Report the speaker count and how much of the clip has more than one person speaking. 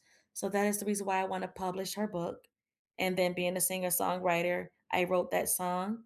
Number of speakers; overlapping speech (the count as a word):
one, no overlap